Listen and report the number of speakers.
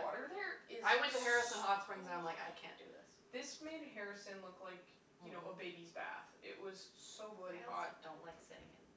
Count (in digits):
2